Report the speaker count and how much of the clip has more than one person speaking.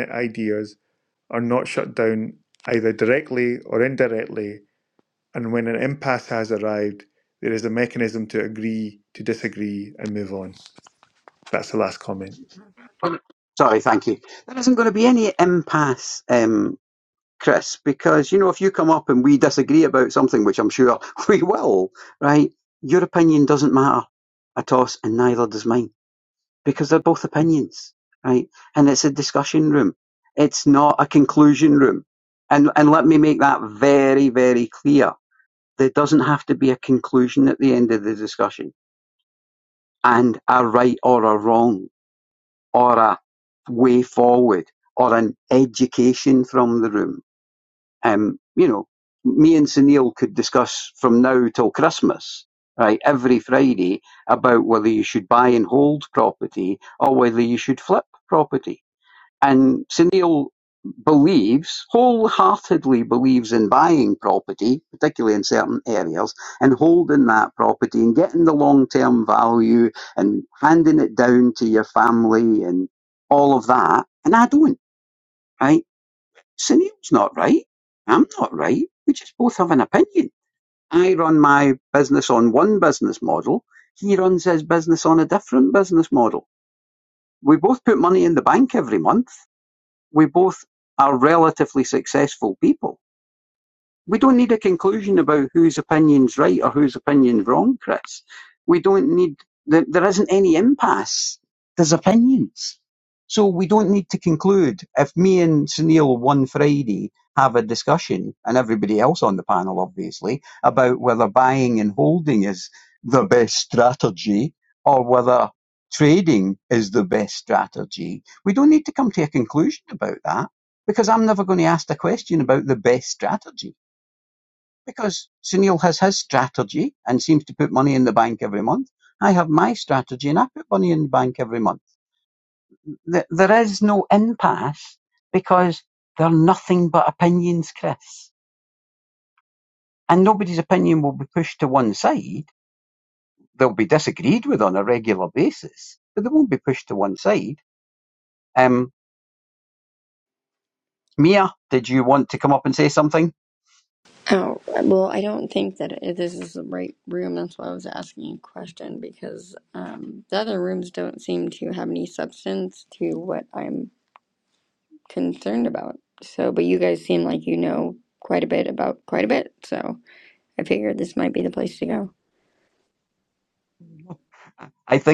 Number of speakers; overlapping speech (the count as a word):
three, no overlap